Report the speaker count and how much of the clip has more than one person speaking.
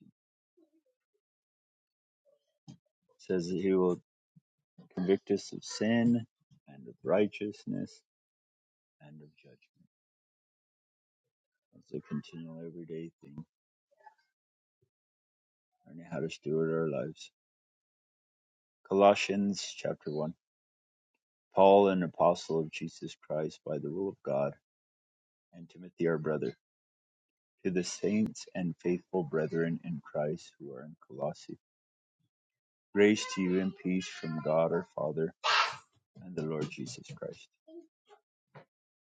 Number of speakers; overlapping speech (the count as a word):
one, no overlap